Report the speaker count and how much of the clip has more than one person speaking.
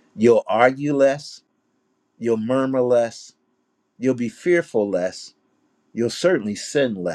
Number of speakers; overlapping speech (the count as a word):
one, no overlap